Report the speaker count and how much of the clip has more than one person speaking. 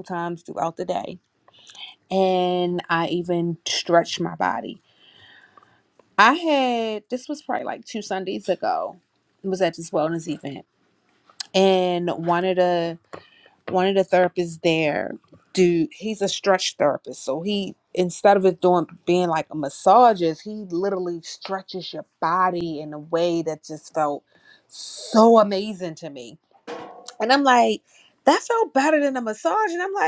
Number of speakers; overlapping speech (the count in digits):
1, no overlap